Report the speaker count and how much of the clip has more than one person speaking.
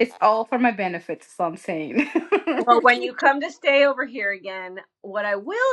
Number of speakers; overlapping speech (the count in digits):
2, no overlap